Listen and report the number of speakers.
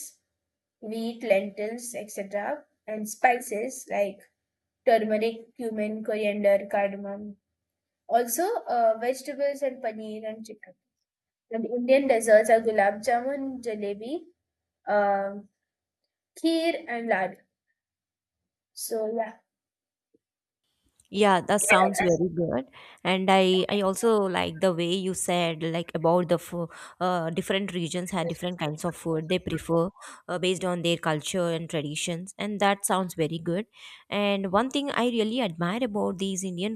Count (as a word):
two